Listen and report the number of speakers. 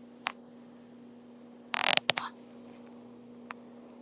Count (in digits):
0